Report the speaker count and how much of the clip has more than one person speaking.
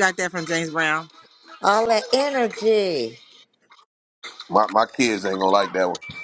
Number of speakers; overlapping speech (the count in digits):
3, no overlap